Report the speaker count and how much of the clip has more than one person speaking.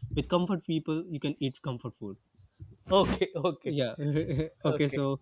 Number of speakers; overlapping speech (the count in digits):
2, about 7%